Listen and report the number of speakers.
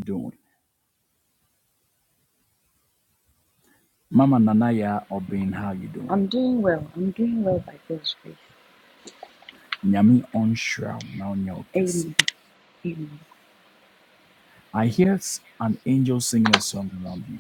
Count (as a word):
two